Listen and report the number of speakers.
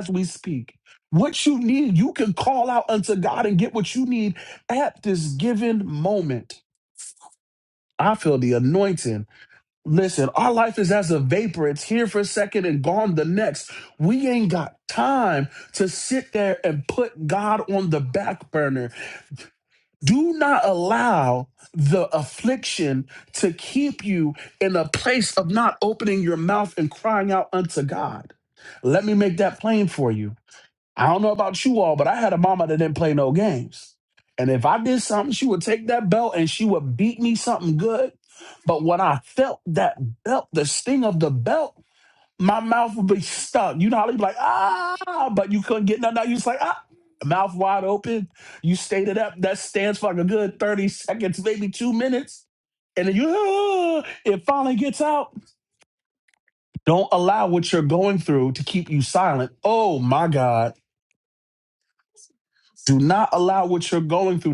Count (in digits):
1